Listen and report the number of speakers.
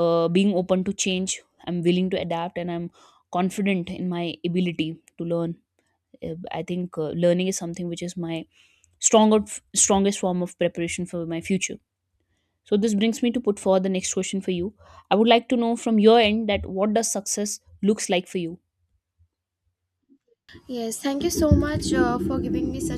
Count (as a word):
two